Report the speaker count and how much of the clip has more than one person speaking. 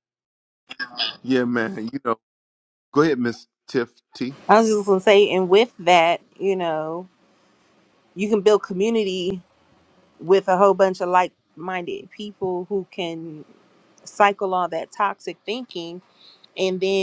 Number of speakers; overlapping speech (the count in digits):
2, no overlap